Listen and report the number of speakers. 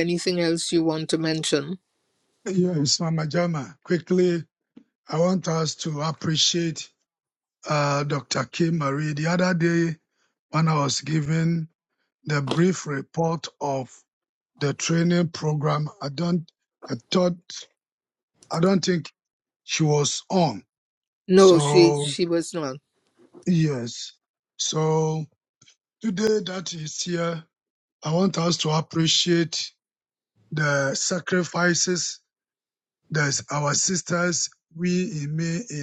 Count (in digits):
2